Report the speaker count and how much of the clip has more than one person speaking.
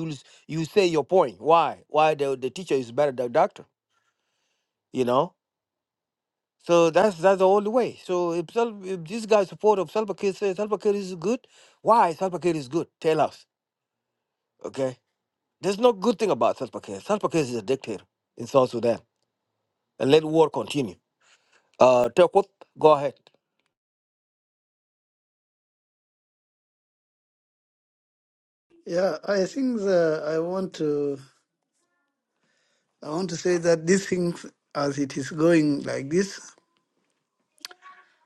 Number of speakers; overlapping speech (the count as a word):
two, no overlap